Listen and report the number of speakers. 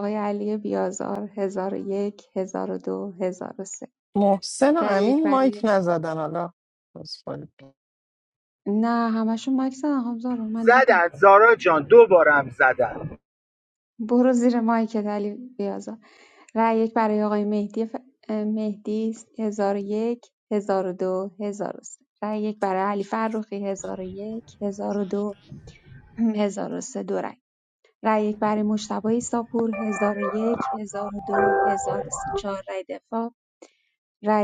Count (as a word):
three